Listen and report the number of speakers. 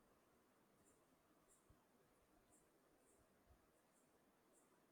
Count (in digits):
0